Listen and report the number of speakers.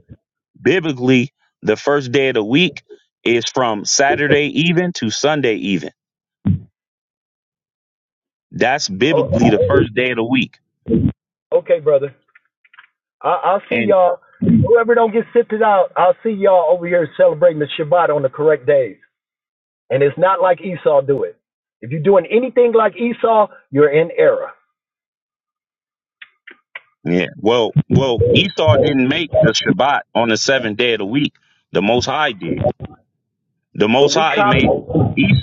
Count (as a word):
two